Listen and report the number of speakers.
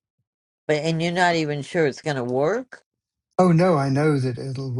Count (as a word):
two